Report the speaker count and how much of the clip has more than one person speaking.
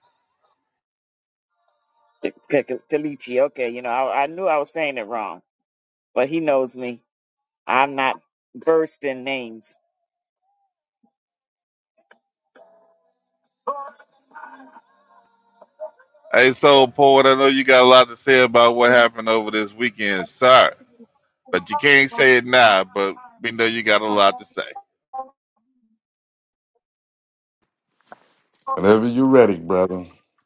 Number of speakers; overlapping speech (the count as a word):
three, no overlap